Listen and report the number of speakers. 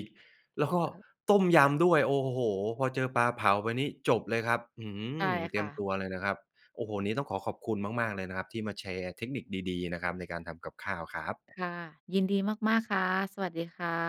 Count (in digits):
2